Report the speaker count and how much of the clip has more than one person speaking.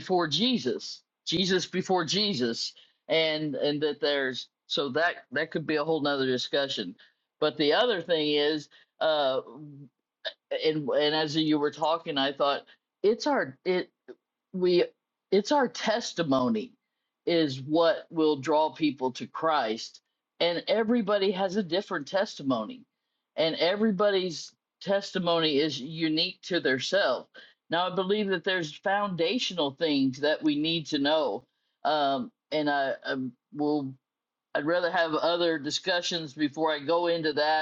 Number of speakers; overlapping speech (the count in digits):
1, no overlap